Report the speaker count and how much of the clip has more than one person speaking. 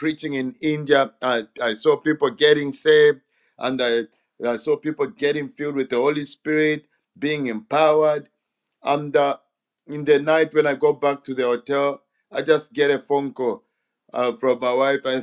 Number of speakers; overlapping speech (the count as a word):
one, no overlap